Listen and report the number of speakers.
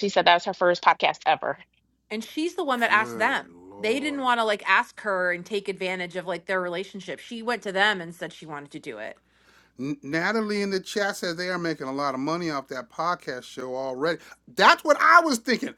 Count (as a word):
three